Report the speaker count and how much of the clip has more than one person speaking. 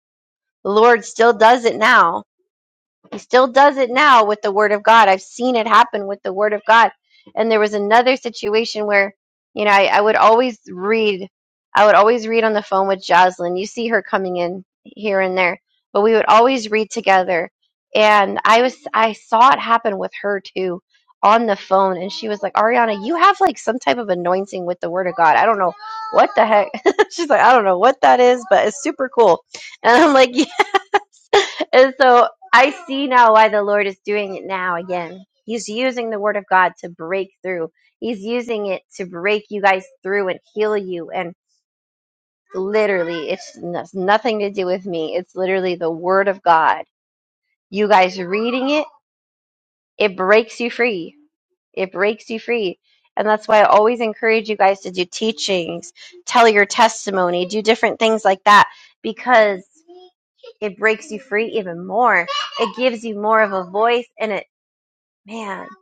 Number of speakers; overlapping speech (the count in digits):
1, no overlap